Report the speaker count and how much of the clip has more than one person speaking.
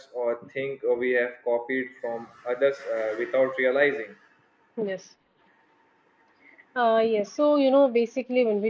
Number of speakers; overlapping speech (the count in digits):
2, no overlap